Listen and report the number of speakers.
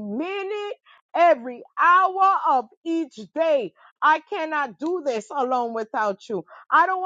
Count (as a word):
one